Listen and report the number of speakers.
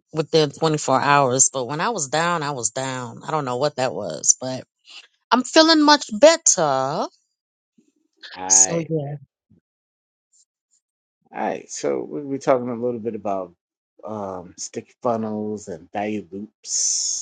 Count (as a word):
two